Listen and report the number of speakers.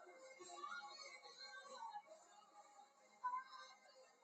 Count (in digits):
0